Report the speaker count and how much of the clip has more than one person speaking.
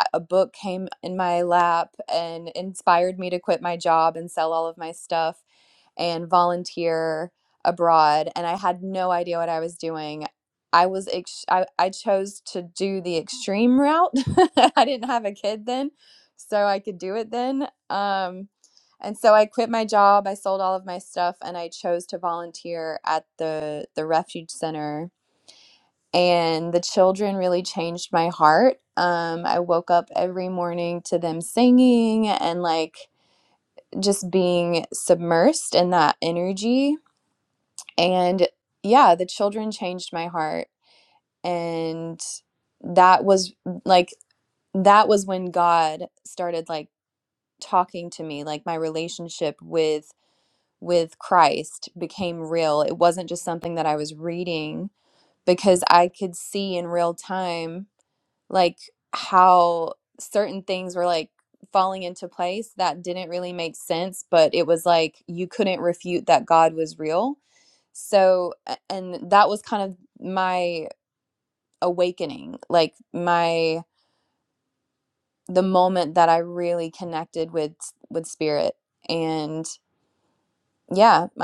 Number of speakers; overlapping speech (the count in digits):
1, no overlap